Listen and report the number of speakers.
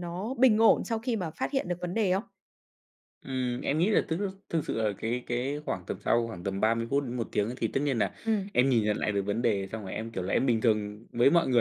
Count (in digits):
2